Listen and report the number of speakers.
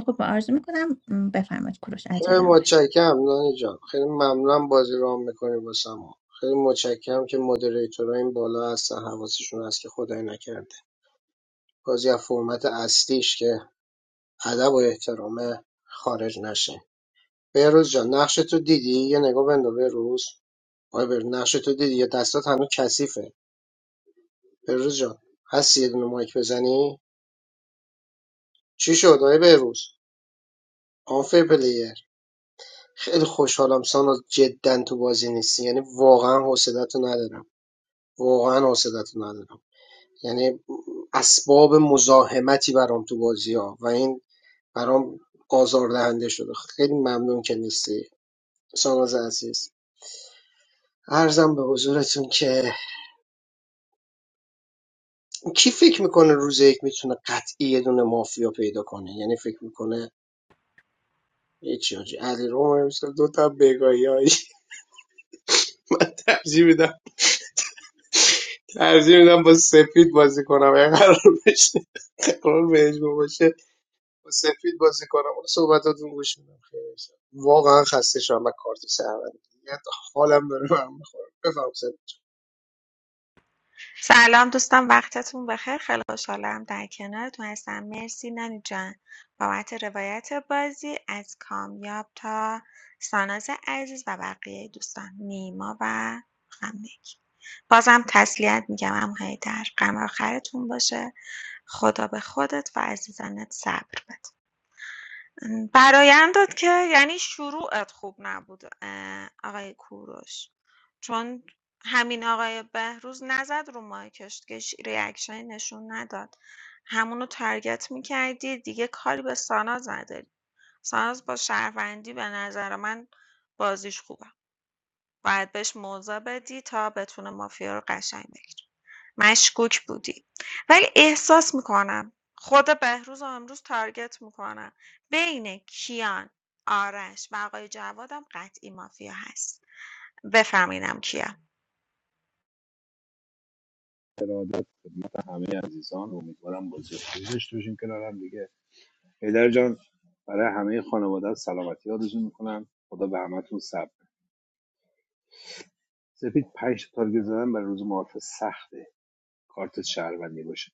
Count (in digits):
4